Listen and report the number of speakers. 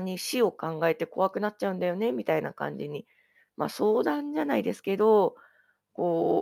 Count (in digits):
1